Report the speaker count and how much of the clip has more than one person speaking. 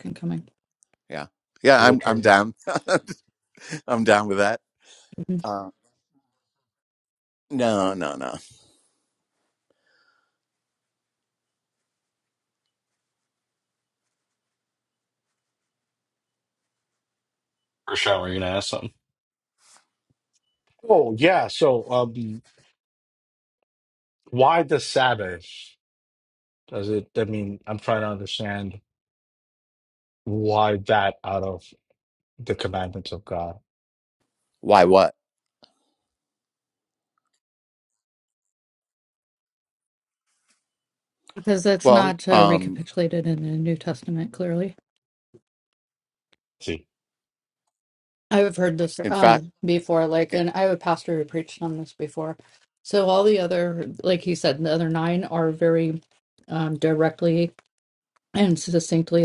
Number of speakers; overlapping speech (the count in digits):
4, about 3%